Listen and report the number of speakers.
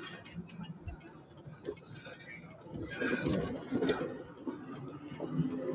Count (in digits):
0